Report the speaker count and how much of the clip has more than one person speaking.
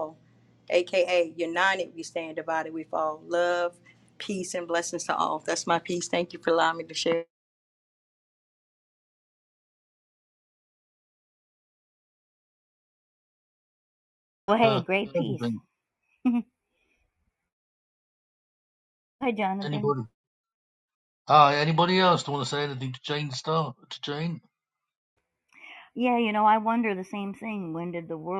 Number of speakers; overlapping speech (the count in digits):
3, about 4%